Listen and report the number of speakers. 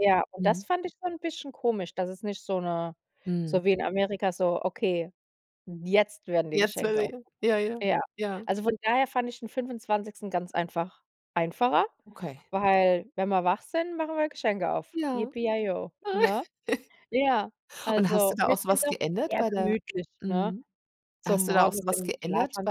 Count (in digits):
2